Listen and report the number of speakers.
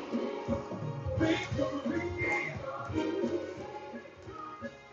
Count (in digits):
0